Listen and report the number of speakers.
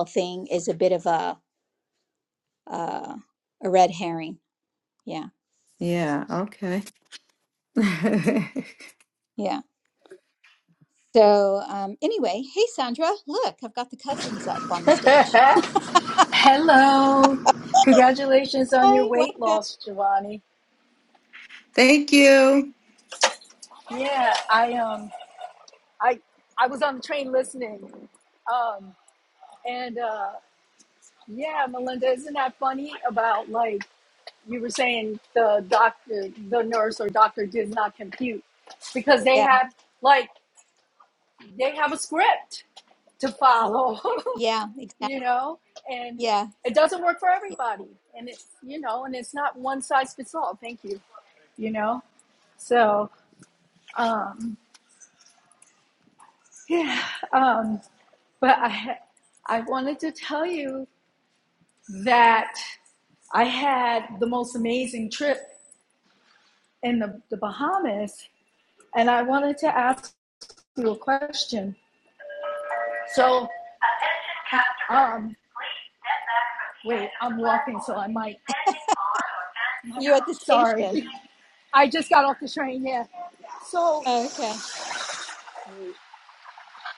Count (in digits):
3